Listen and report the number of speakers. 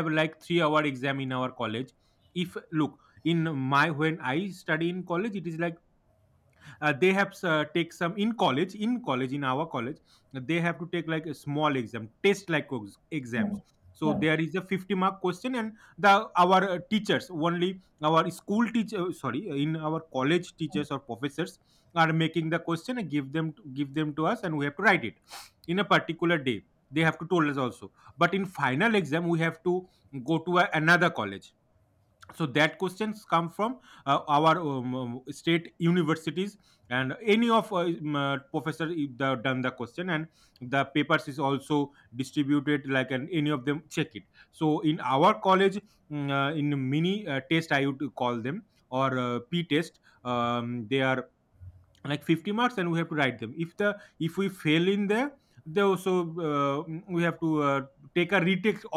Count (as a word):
one